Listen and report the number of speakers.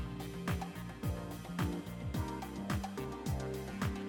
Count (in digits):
0